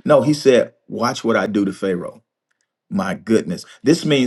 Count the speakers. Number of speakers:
1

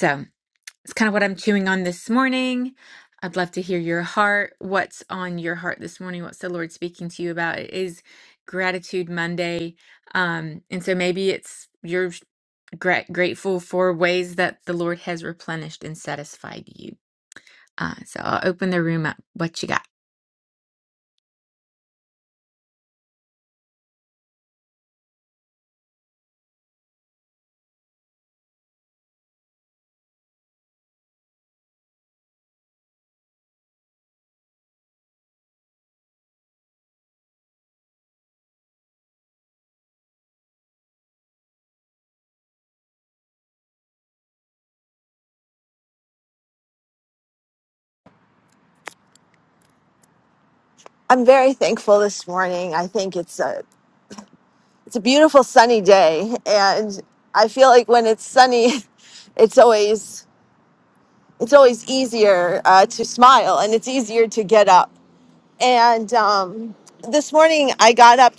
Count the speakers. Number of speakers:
2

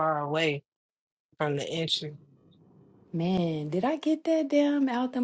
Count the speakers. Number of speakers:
2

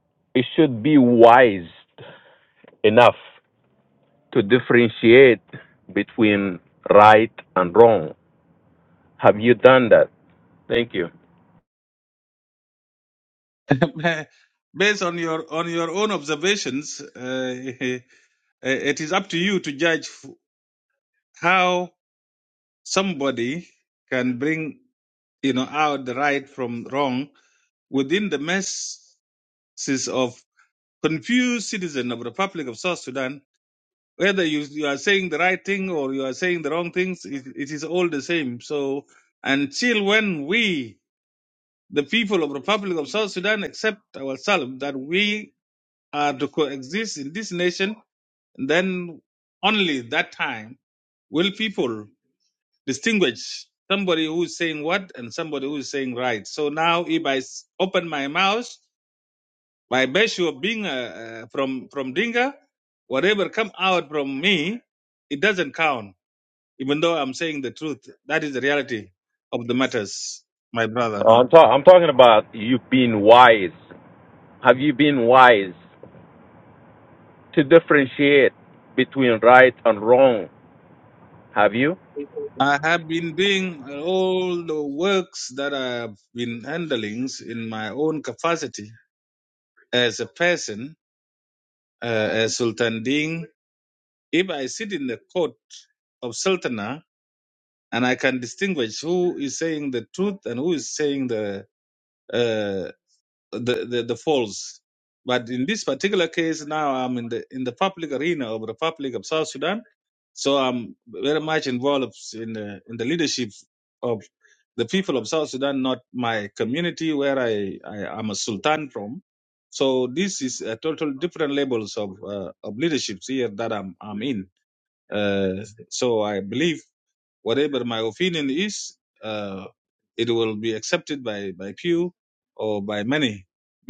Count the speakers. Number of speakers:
2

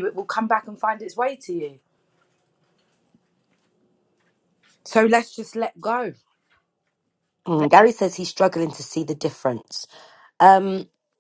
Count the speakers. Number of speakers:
2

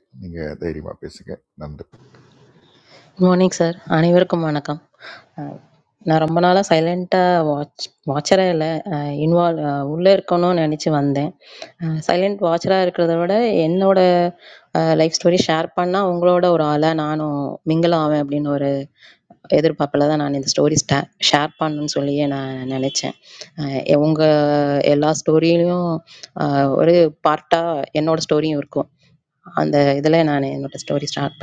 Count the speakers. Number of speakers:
2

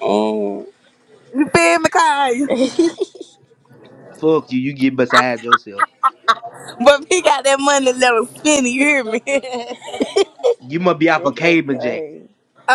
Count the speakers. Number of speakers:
3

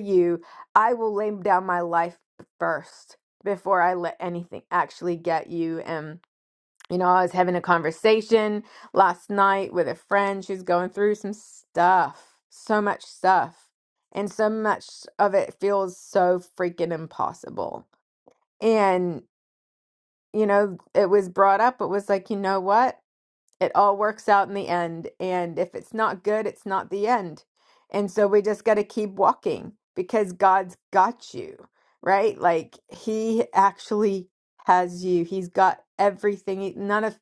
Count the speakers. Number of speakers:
1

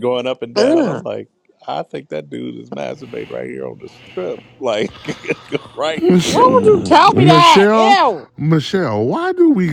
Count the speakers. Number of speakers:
3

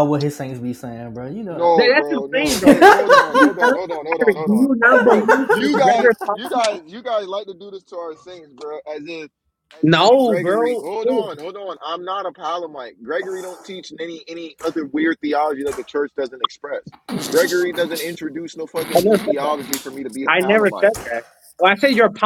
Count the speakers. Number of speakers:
3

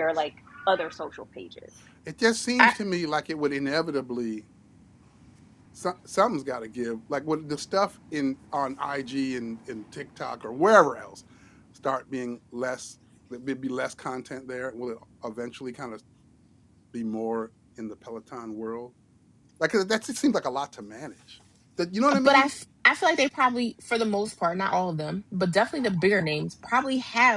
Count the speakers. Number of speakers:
3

